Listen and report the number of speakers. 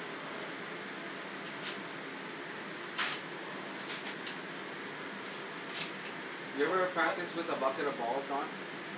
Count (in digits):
1